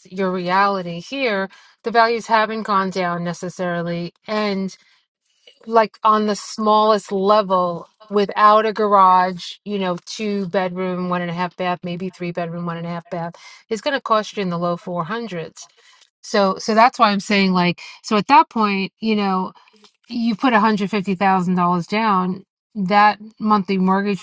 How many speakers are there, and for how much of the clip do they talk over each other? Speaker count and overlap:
one, no overlap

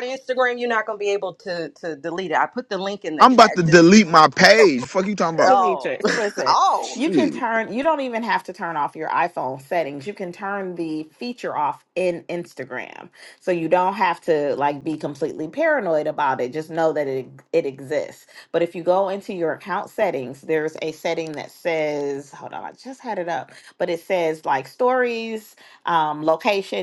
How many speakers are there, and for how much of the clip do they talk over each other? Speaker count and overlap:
three, about 6%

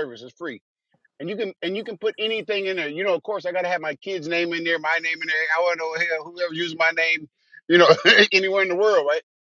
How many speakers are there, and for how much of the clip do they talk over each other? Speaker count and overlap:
one, no overlap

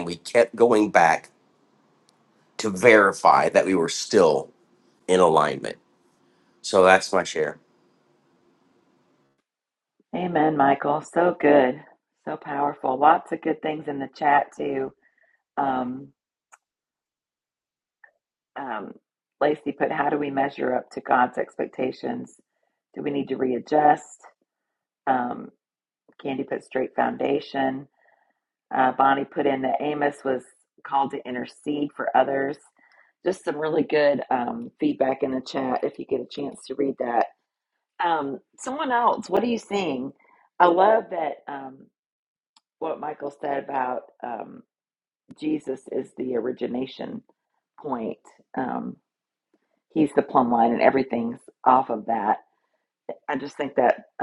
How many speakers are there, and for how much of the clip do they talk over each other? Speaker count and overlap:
two, no overlap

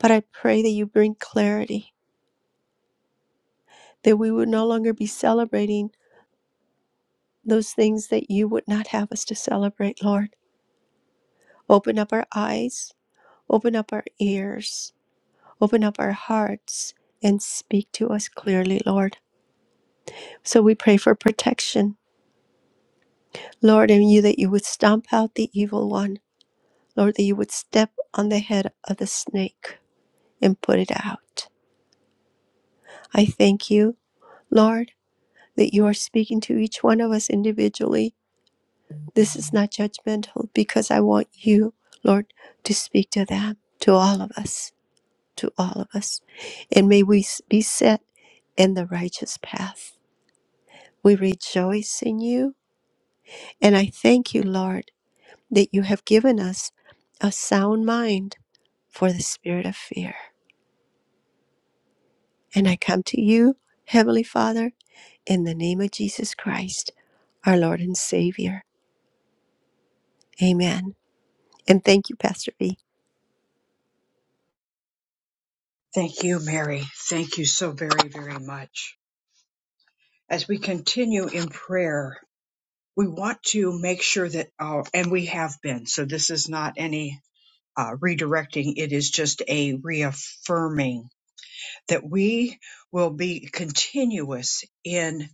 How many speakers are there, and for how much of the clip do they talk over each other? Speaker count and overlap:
two, no overlap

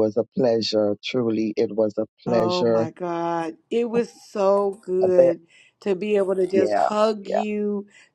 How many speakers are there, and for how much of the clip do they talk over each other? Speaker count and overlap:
two, about 18%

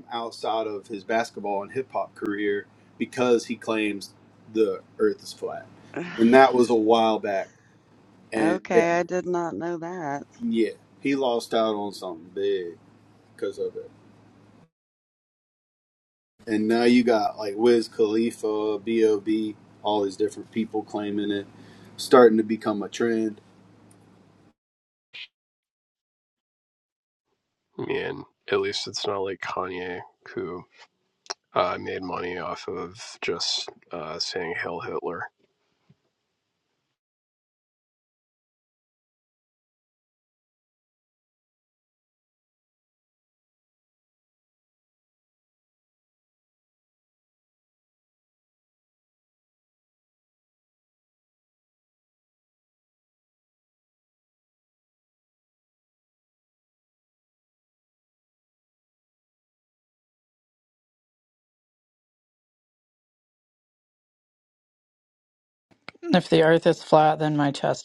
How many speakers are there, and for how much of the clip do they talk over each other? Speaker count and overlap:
four, about 1%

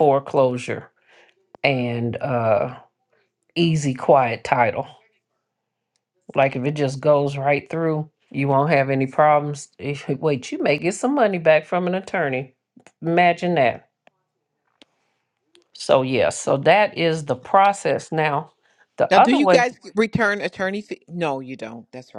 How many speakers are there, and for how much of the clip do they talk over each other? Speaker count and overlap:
two, about 2%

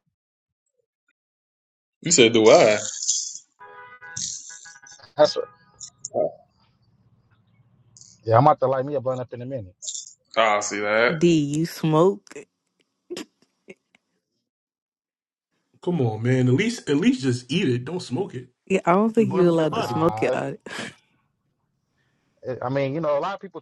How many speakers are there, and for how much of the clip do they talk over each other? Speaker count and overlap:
four, about 6%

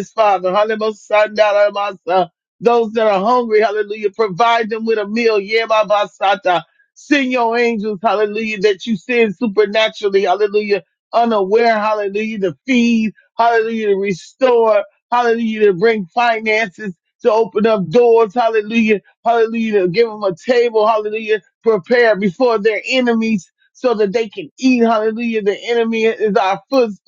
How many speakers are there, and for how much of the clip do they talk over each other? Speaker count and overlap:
one, no overlap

